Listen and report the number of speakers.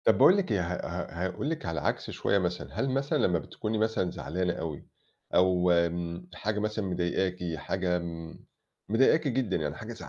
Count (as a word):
one